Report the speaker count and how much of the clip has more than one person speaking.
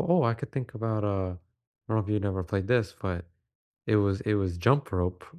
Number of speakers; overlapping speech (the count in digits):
1, no overlap